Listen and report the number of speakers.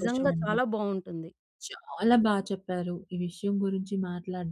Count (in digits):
2